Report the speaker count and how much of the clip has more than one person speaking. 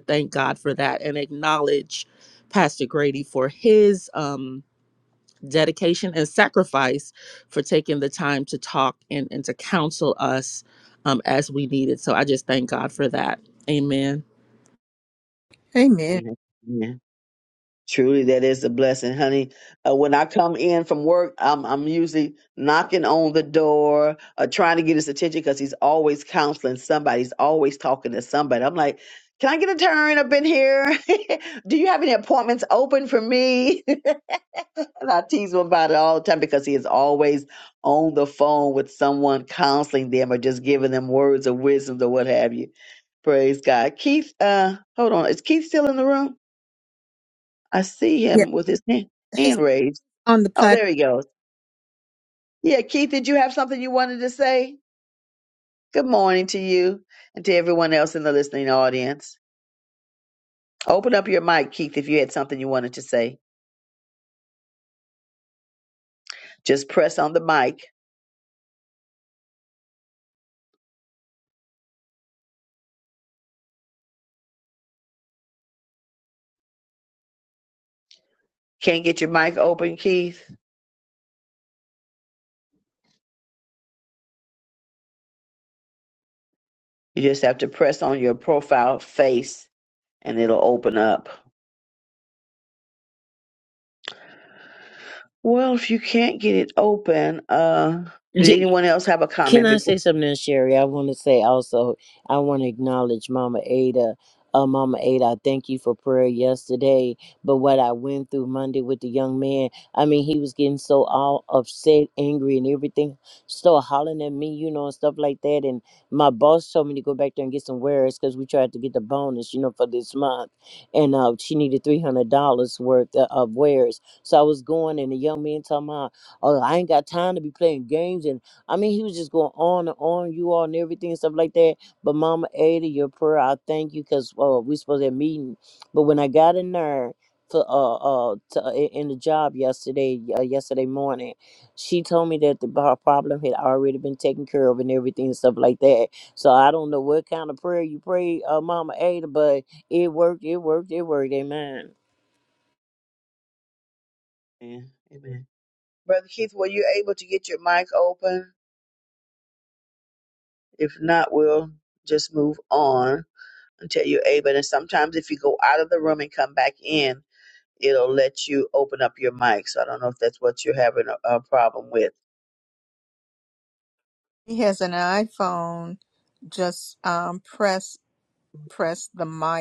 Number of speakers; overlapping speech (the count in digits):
4, about 1%